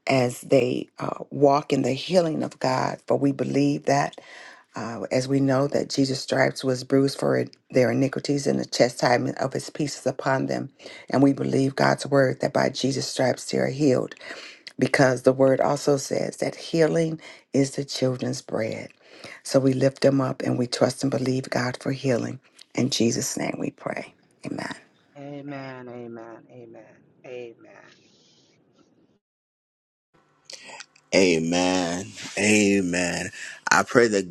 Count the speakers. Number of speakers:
three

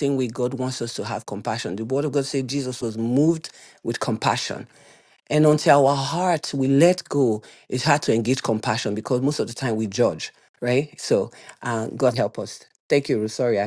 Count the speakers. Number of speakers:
one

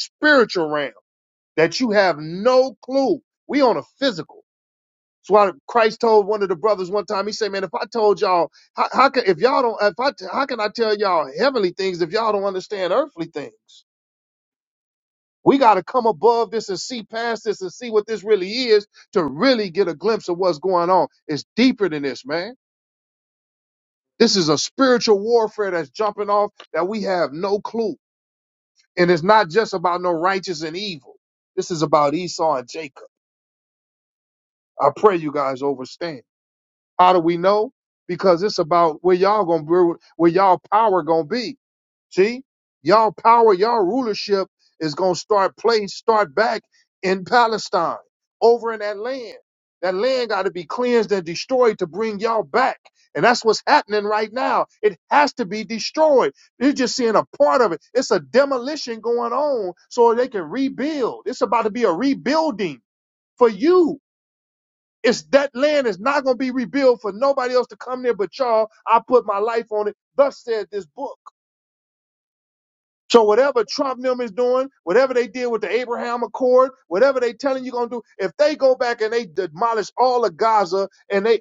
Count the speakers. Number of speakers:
one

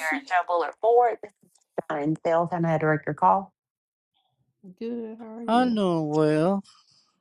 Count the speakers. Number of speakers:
three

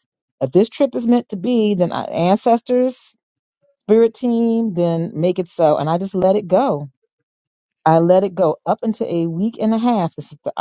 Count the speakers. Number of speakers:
one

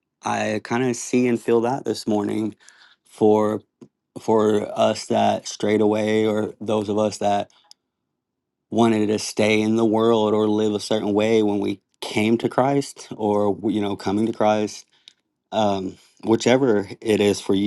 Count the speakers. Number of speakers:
one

